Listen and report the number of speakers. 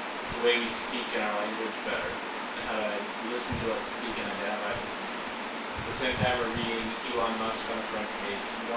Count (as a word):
one